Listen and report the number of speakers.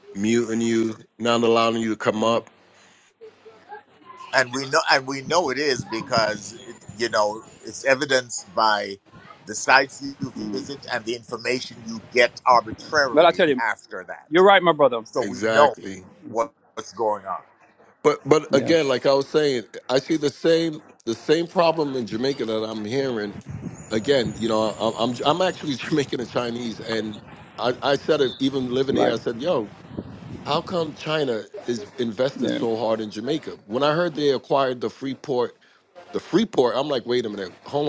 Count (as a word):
three